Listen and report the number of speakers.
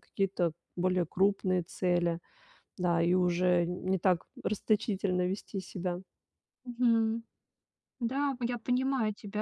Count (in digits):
2